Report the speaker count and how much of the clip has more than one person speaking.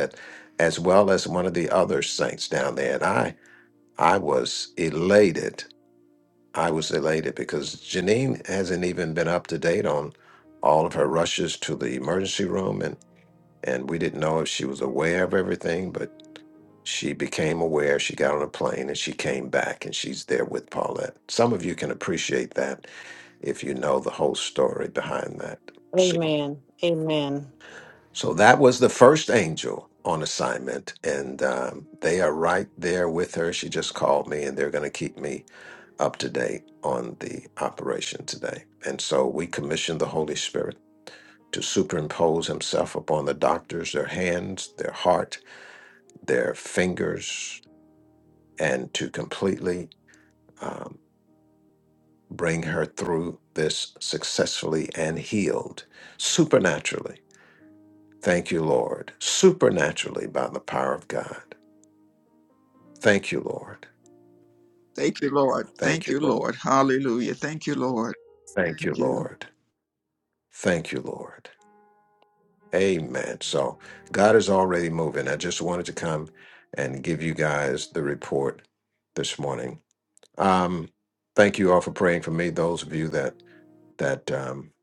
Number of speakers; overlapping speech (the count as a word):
three, about 2%